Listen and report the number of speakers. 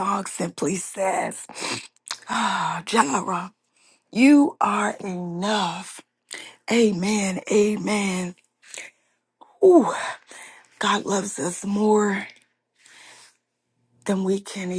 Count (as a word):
one